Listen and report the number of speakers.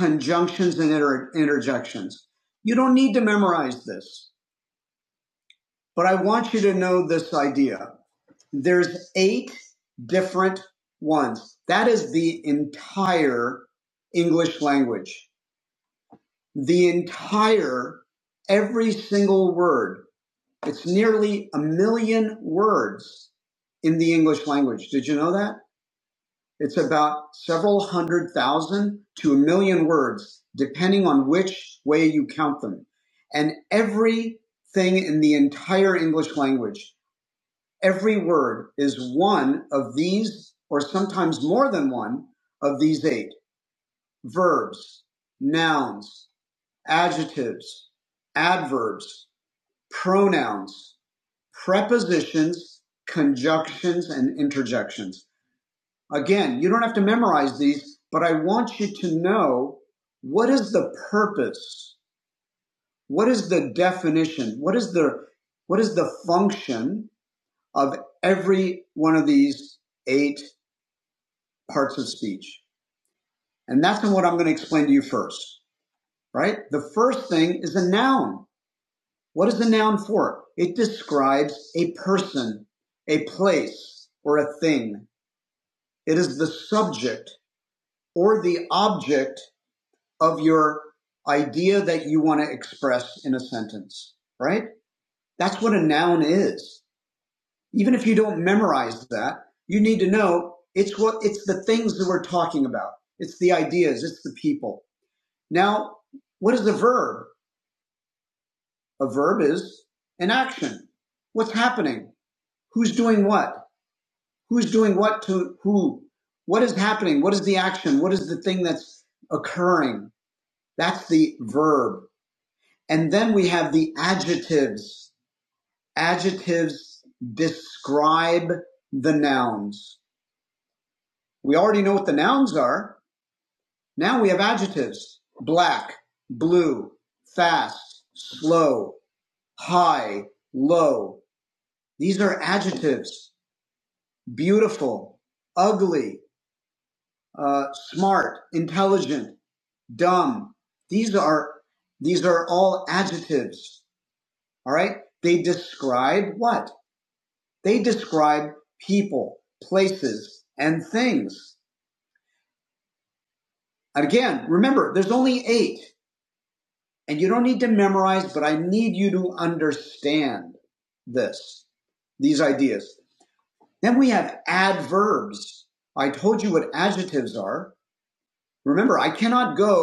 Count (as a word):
one